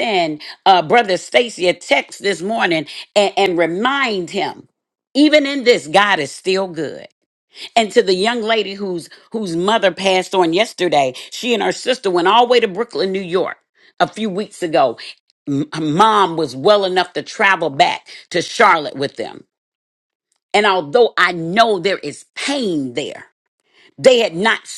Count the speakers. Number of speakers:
one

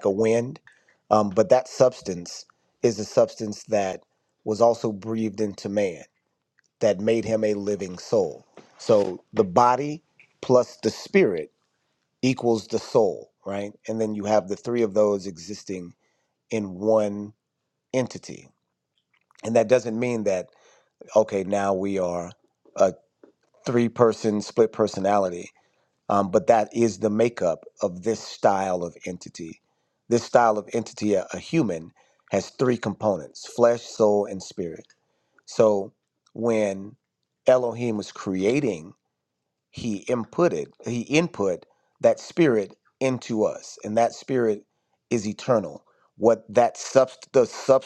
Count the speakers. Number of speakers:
one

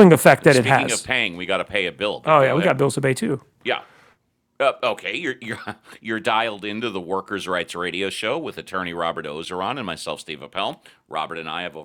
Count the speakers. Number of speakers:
two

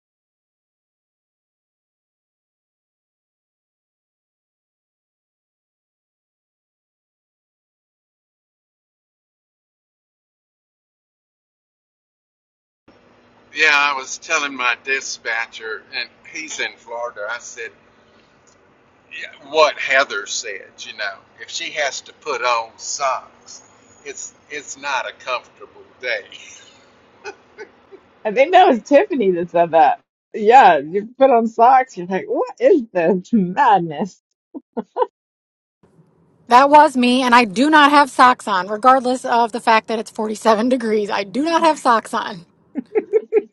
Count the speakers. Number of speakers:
three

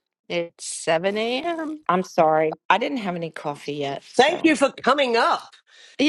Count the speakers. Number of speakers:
three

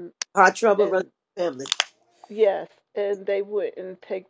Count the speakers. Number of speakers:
two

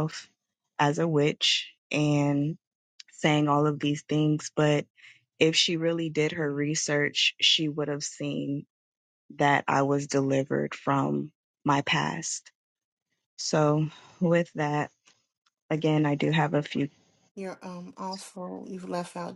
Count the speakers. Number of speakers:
two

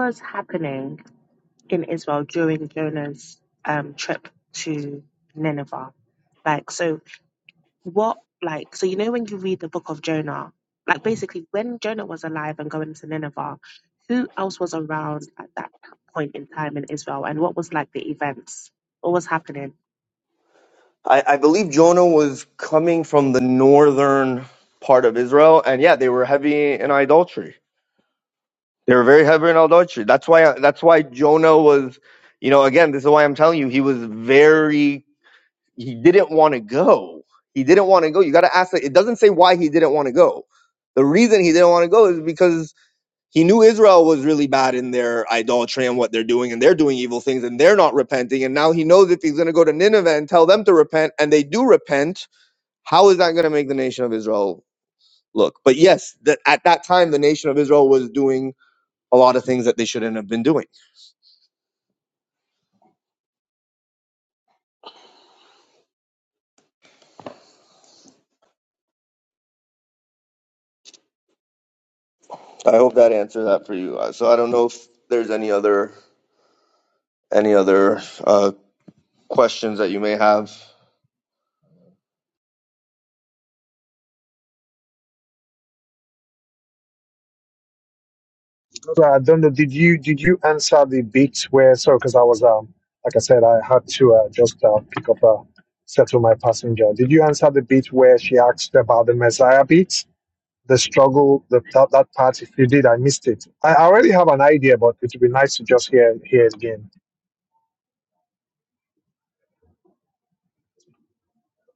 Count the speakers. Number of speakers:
three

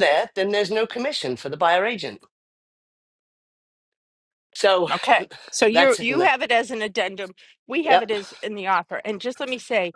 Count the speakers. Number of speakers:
two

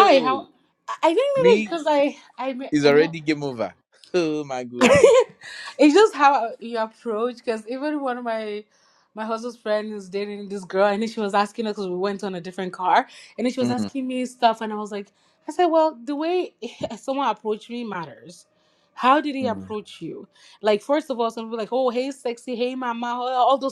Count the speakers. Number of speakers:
two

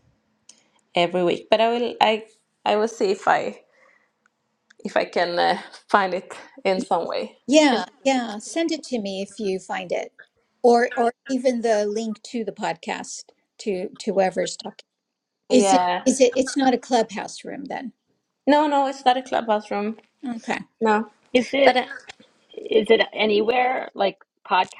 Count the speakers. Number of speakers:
three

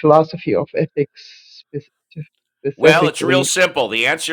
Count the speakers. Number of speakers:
two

